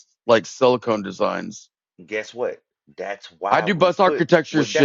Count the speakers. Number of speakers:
2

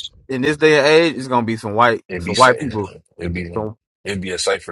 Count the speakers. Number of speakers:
2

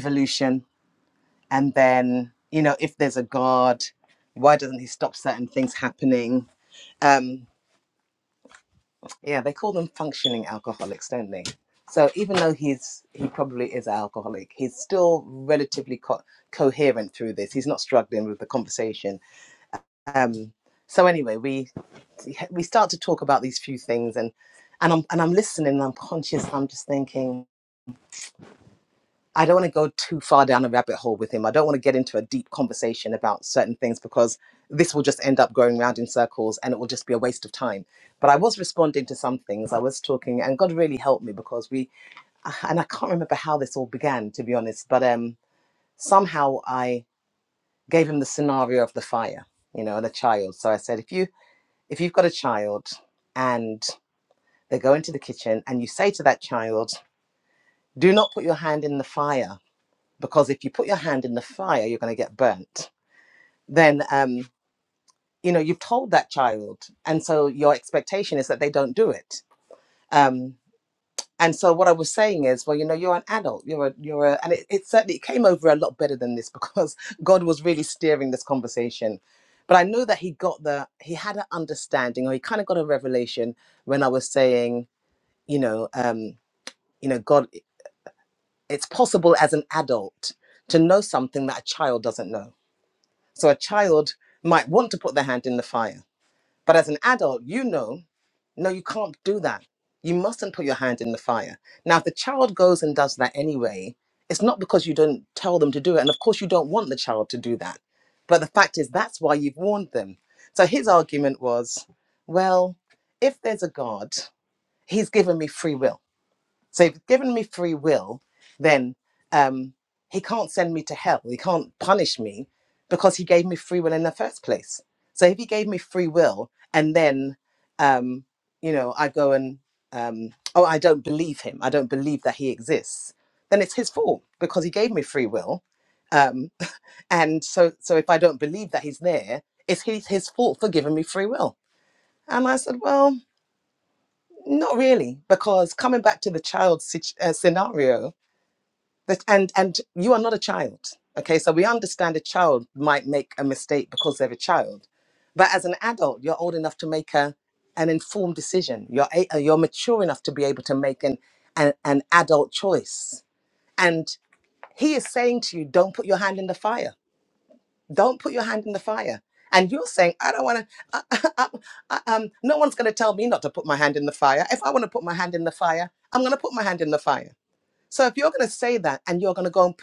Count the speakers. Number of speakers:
1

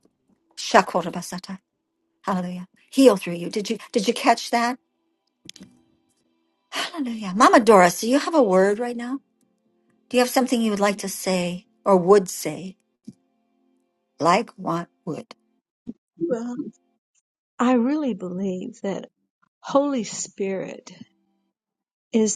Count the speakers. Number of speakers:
2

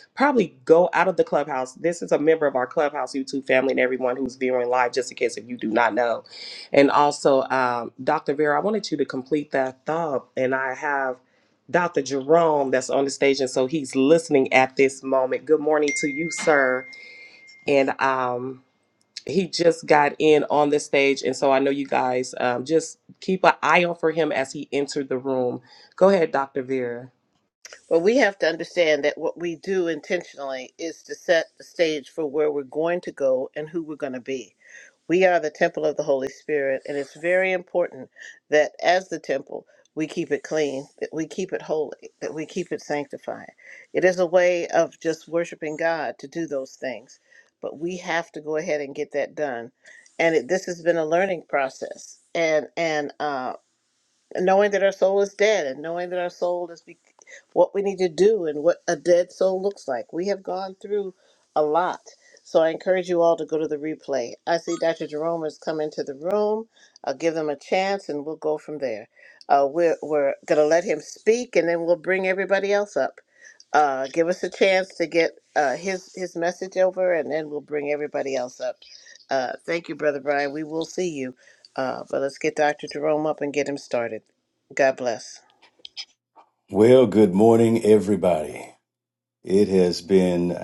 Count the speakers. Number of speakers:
3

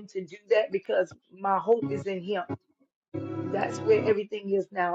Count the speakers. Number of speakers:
1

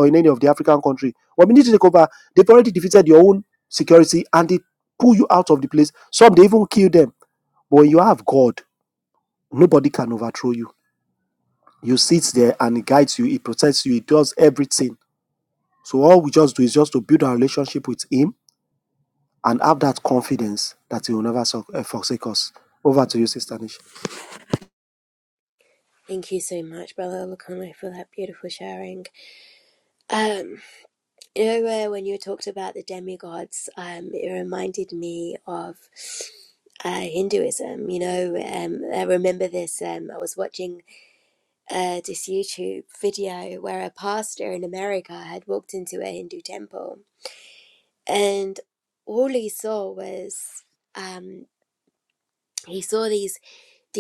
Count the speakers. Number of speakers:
2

